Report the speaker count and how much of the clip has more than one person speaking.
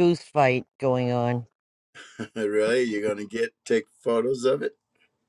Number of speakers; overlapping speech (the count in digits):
2, no overlap